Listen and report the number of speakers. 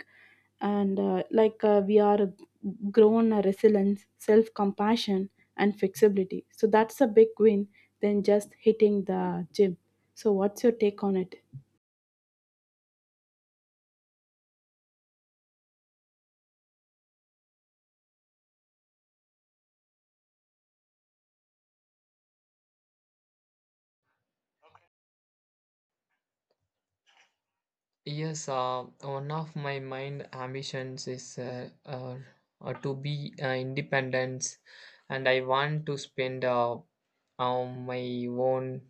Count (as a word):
two